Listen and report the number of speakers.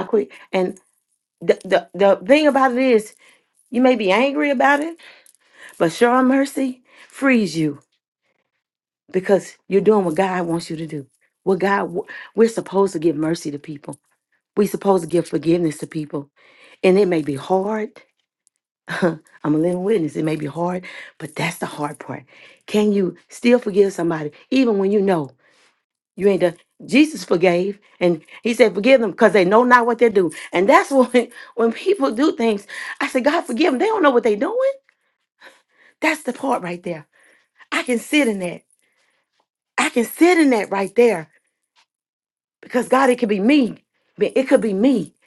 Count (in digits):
1